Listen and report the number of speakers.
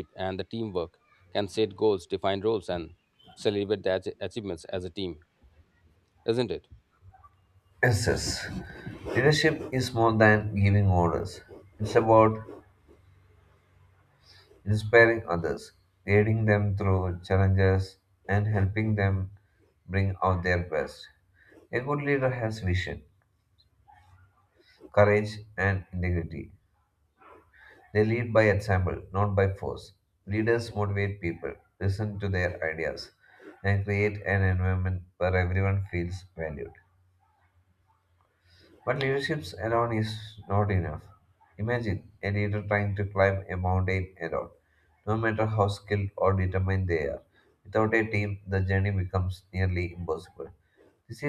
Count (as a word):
two